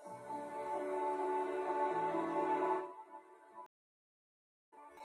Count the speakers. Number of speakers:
zero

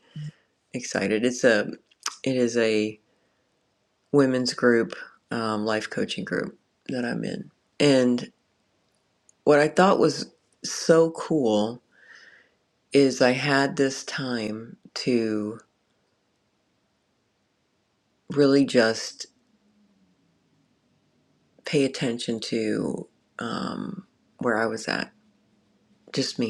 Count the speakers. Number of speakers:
one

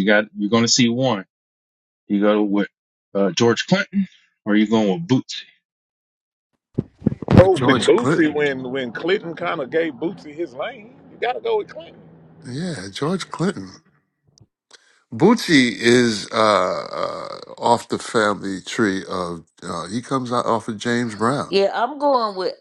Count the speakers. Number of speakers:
four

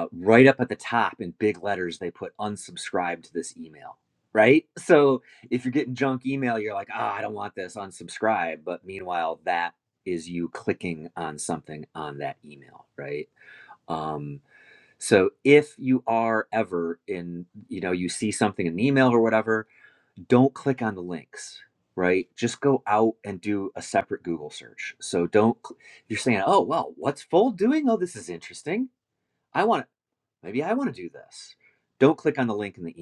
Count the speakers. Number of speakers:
one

